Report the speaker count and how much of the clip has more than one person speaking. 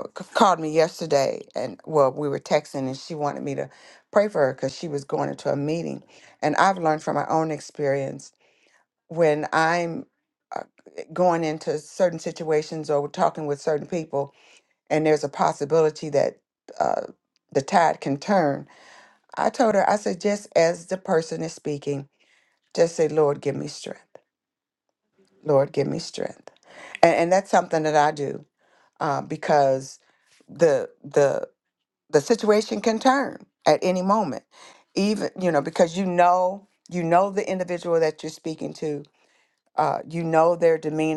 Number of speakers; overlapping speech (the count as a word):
one, no overlap